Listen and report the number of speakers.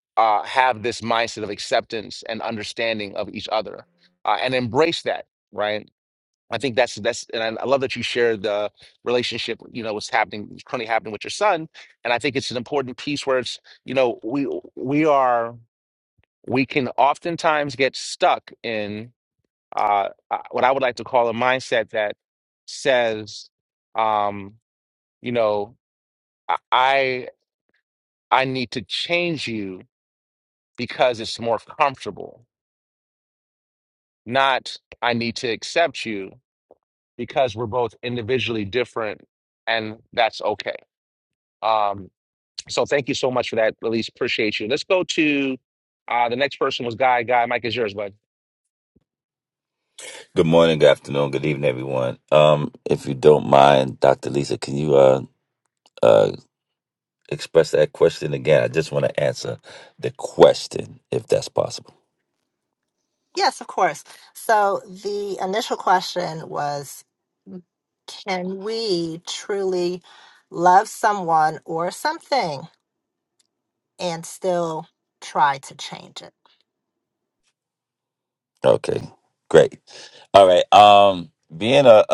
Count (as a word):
three